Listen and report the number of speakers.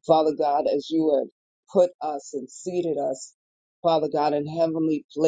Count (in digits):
1